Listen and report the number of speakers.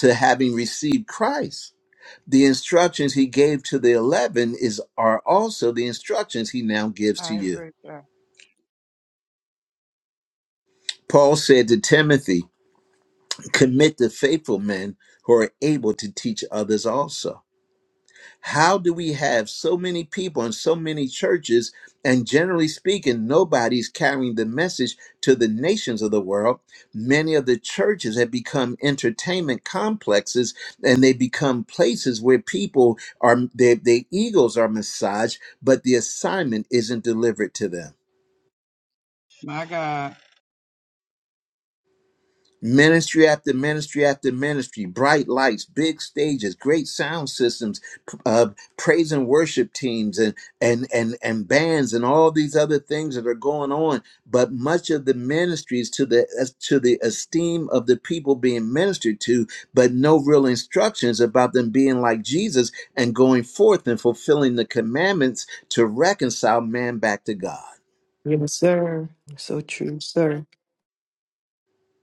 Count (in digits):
3